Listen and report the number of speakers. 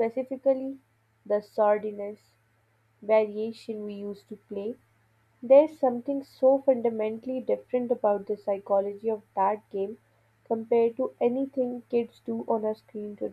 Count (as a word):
one